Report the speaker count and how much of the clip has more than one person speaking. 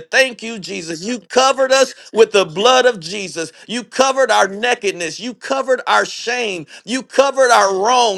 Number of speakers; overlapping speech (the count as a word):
one, no overlap